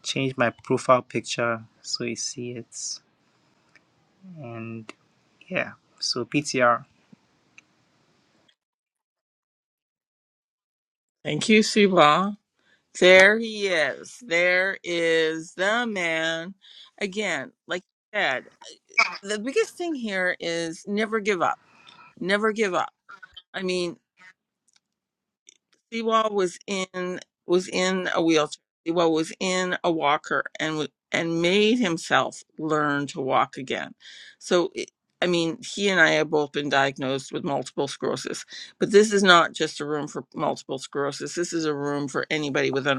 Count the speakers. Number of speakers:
two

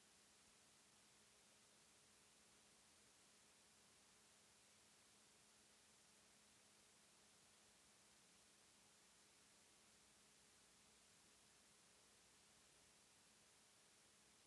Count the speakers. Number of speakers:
zero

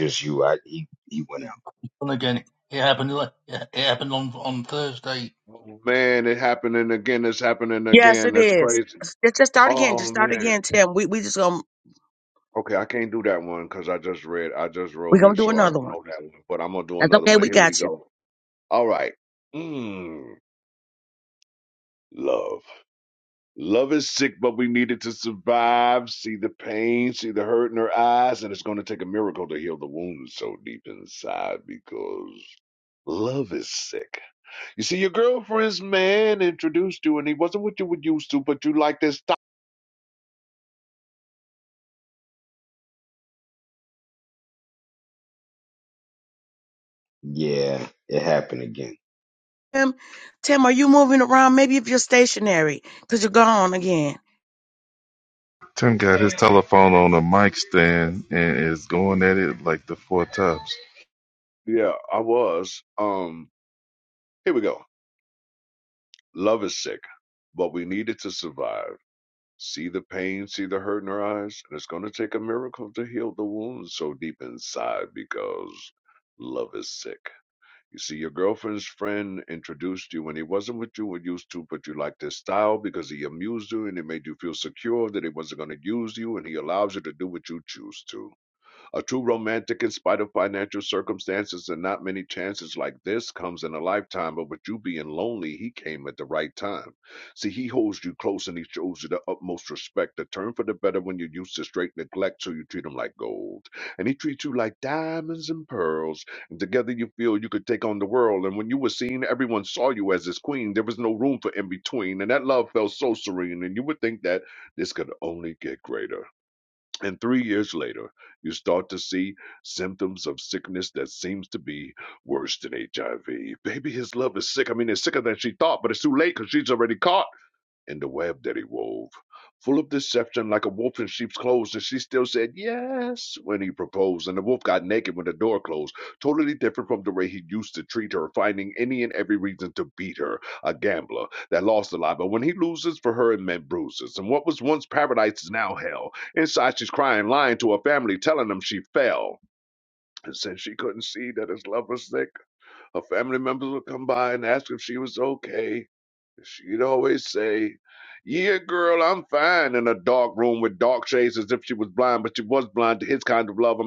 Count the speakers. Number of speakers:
five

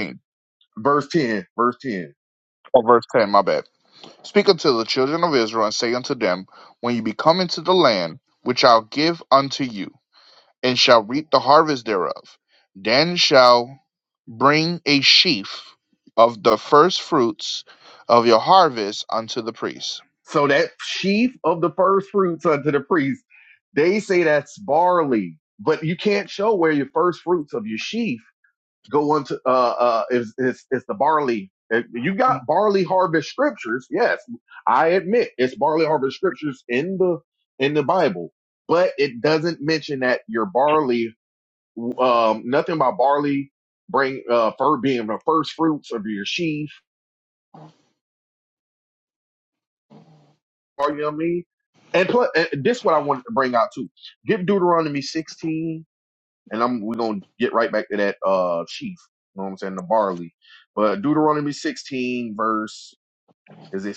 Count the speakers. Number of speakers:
two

